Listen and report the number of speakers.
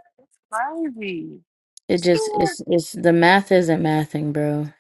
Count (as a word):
two